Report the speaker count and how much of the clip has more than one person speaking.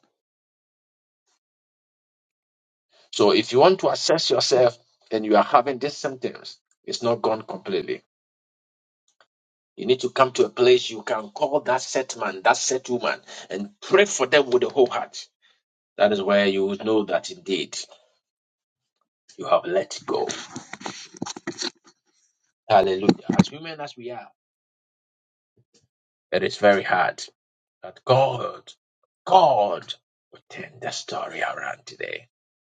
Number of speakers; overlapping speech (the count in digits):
1, no overlap